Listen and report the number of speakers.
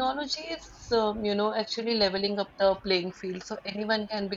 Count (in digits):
1